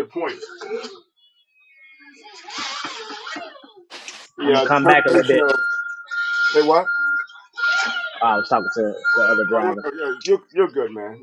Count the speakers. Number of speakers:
2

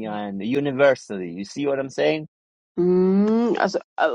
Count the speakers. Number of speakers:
2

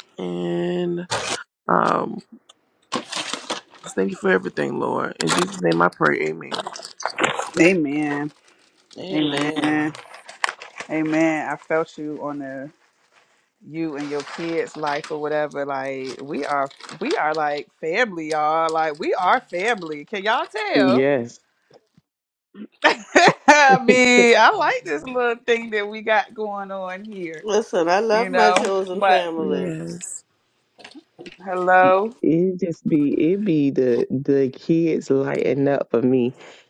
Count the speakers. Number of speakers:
4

